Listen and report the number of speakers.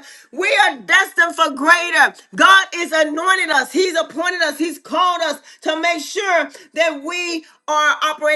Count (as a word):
one